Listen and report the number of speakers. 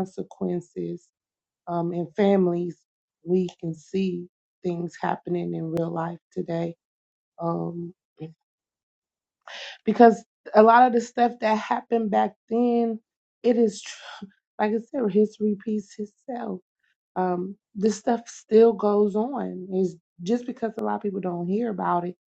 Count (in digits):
1